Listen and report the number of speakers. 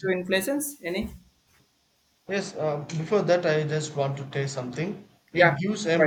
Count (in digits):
2